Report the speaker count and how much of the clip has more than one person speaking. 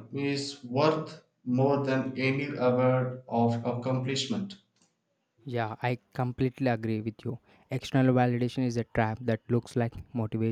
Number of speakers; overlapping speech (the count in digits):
2, no overlap